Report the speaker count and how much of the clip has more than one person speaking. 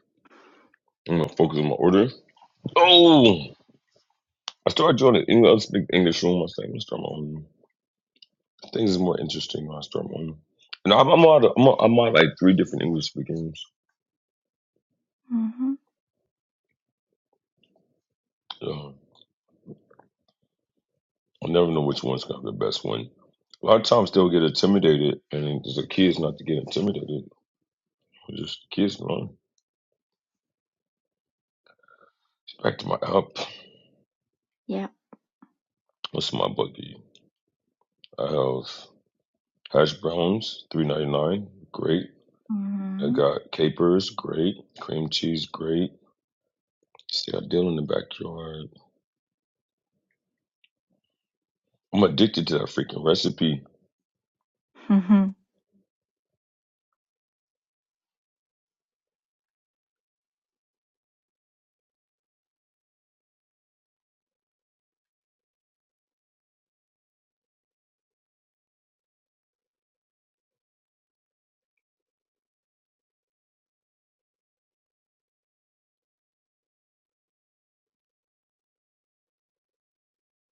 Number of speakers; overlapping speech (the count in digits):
2, under 1%